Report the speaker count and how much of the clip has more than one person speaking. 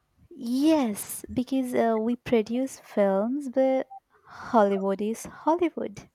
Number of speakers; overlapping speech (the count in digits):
1, no overlap